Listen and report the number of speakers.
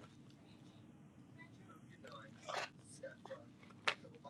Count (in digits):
0